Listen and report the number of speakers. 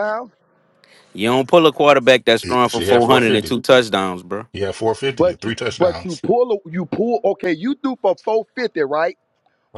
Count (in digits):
3